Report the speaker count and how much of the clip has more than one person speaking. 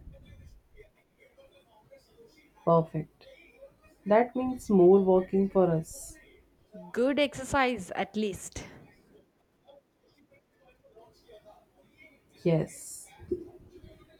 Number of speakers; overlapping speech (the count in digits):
2, no overlap